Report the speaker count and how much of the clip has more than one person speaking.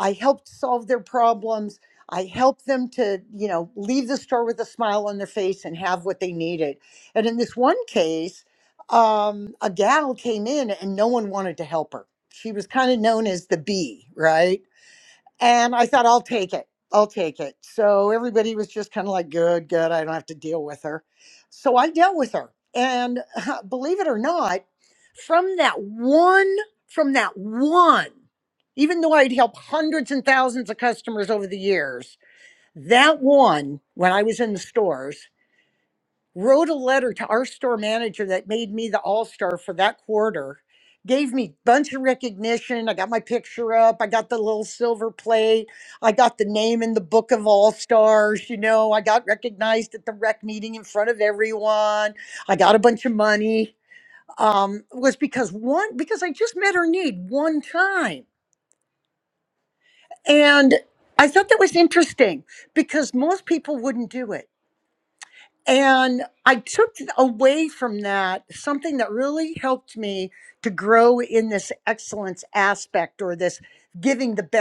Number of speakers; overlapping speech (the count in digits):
1, no overlap